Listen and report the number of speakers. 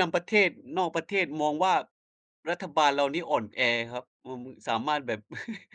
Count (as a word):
one